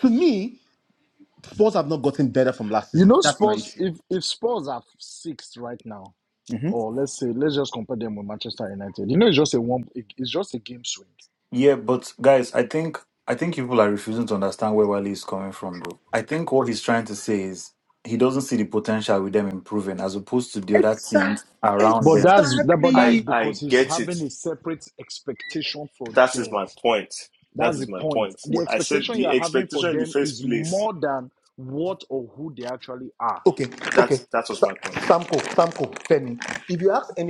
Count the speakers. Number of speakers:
4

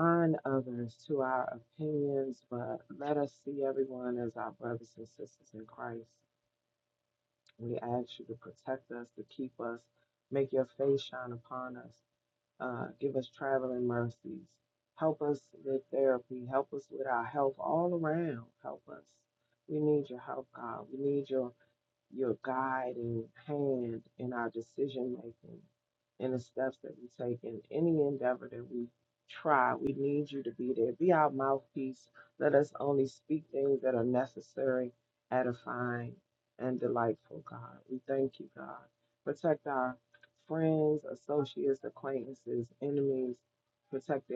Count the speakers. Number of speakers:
1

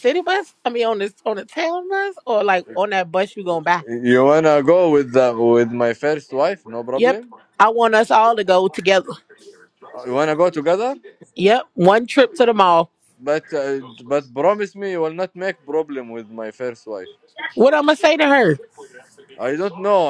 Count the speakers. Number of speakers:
2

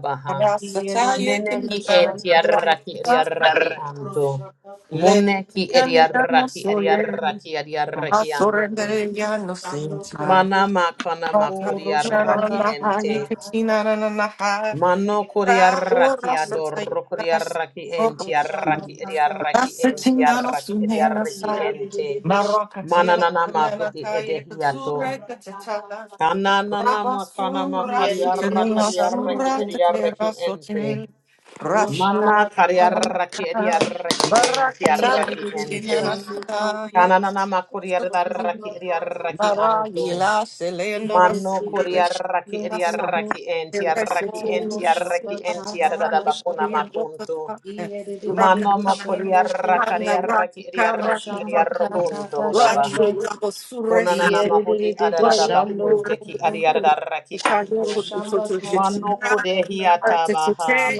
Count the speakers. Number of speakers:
3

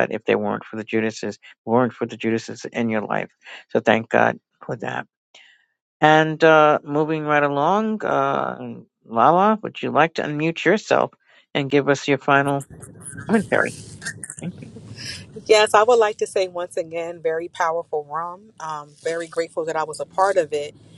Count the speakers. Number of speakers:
2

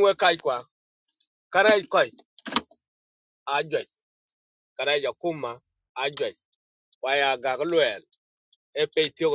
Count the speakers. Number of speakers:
1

